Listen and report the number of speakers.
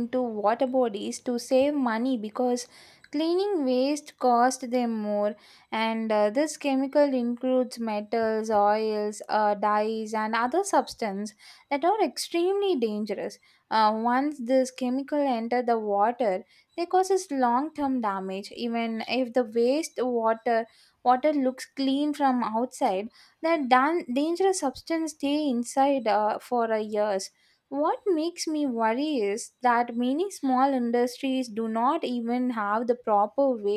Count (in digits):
1